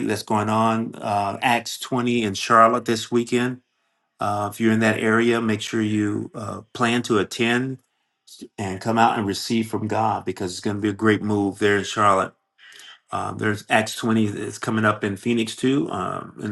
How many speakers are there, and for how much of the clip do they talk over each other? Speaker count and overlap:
1, no overlap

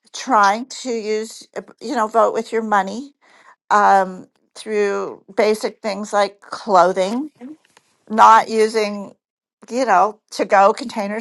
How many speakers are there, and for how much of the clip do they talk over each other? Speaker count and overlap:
1, no overlap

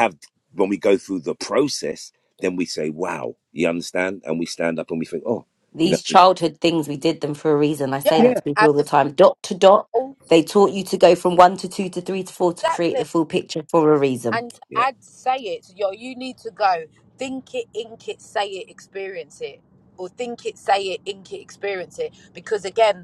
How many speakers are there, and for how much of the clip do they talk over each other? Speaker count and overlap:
3, about 8%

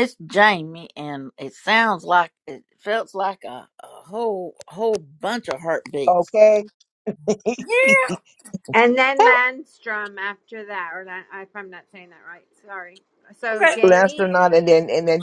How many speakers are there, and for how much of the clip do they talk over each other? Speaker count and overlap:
3, about 6%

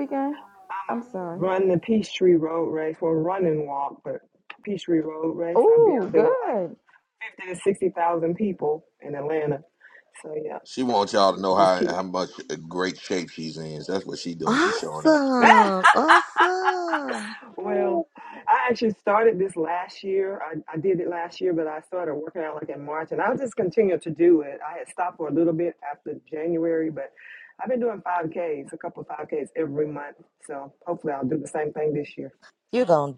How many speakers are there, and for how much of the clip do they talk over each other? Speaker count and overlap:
4, about 7%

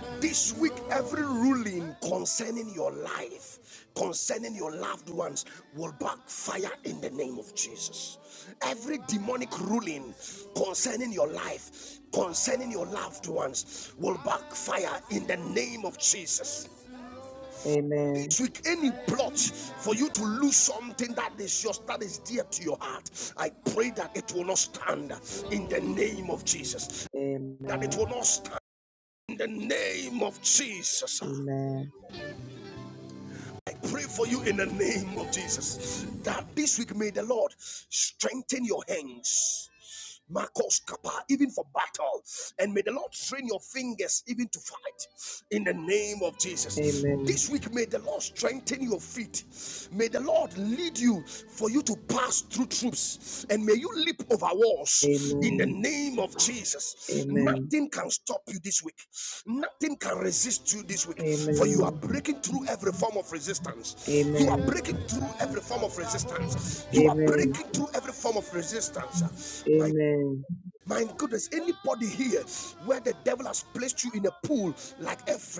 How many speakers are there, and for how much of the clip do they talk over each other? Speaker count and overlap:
2, about 6%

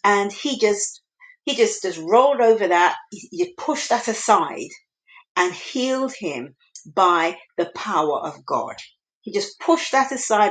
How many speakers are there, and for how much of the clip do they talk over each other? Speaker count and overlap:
1, no overlap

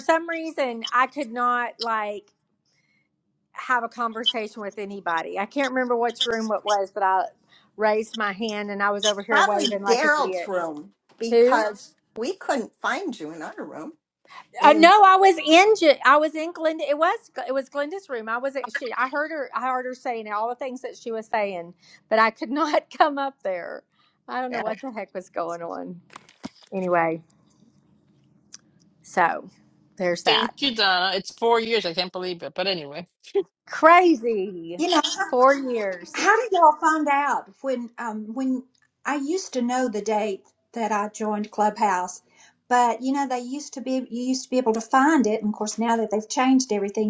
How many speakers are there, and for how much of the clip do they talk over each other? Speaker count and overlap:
4, about 5%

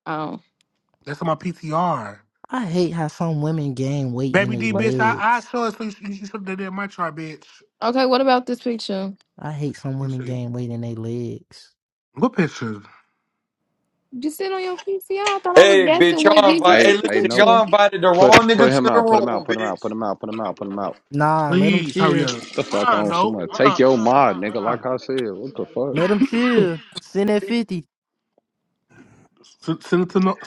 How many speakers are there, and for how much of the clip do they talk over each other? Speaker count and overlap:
5, about 26%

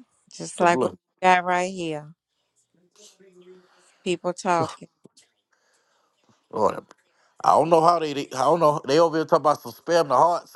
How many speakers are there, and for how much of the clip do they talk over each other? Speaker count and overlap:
2, about 3%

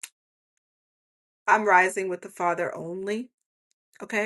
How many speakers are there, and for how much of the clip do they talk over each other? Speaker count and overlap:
1, no overlap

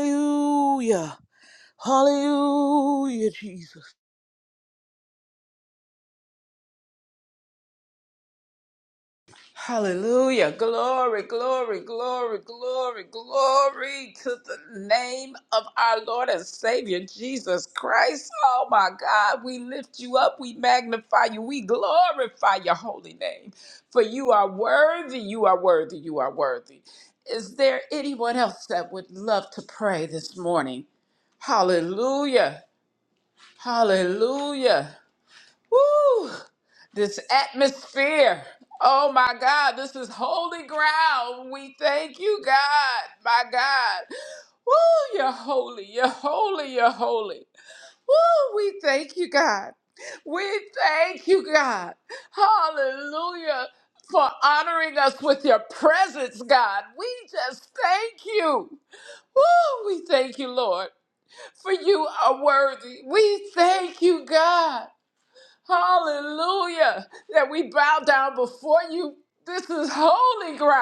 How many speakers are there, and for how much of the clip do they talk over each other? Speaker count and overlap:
2, no overlap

